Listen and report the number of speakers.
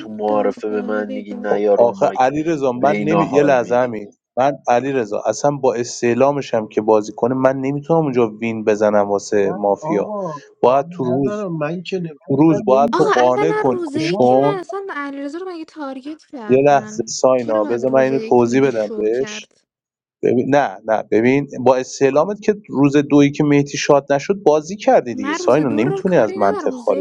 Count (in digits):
4